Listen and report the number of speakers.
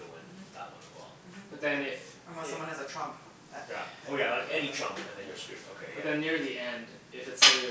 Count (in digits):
3